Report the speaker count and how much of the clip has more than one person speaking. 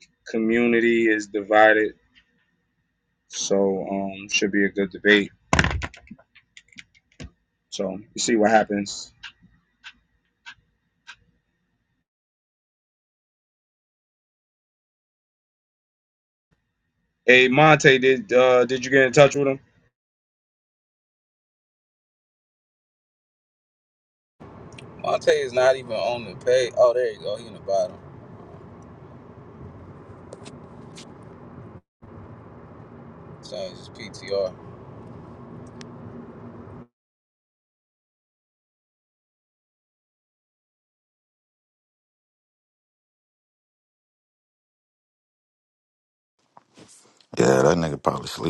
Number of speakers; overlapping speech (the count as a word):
three, no overlap